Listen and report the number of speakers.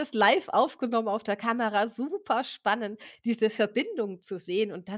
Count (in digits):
1